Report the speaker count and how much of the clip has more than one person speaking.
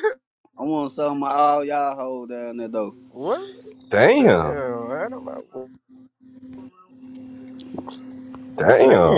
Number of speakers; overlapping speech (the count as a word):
three, about 9%